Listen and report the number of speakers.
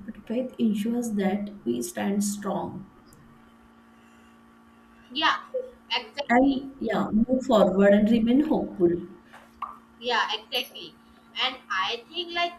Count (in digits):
2